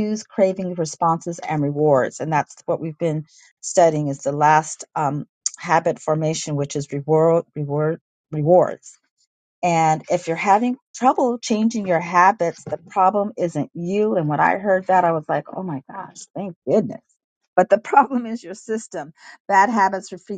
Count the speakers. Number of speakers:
1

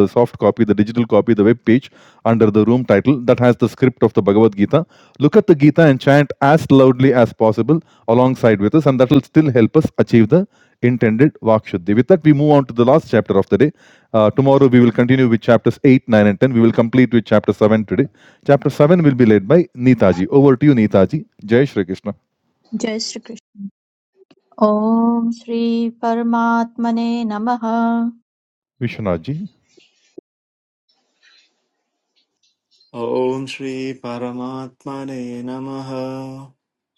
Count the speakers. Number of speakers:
3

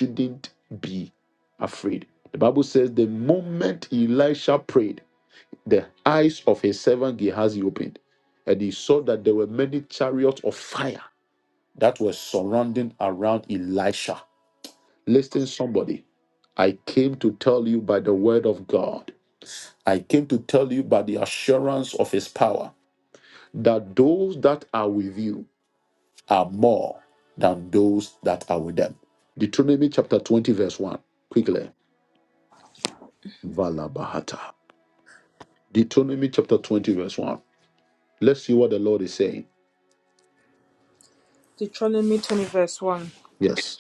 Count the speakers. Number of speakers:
2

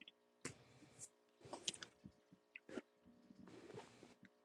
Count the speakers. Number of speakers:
0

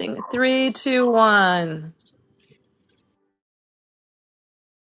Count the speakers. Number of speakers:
1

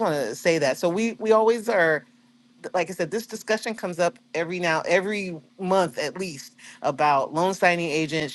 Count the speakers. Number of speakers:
1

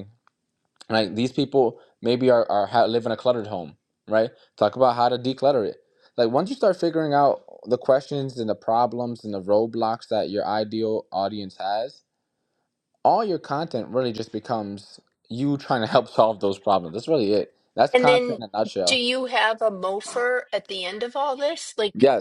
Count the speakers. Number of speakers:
2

